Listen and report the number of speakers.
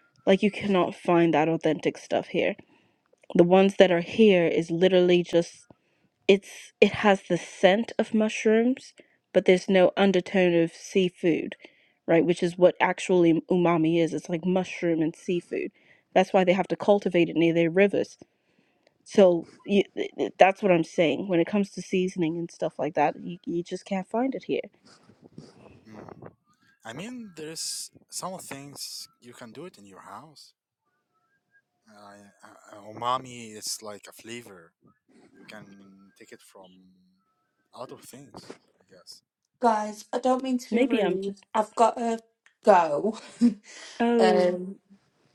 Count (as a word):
three